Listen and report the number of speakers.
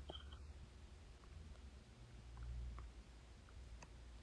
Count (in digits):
0